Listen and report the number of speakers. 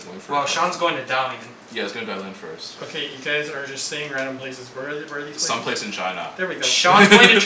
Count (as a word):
three